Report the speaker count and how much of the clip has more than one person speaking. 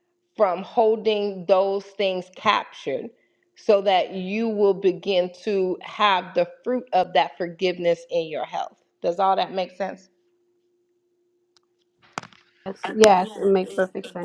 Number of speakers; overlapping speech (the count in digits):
2, no overlap